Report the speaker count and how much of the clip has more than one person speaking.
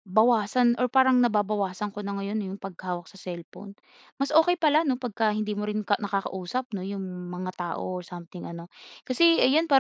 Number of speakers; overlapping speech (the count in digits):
1, no overlap